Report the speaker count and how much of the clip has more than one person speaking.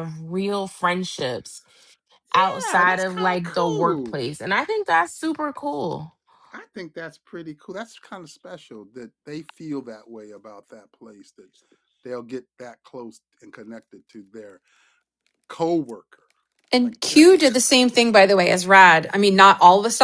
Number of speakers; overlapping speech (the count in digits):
3, about 10%